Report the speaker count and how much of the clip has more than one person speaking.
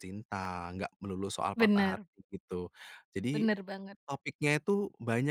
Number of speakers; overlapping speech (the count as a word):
two, about 11%